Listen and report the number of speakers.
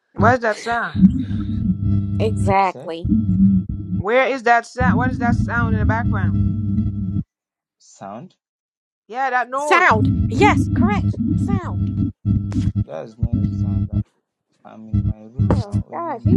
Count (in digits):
3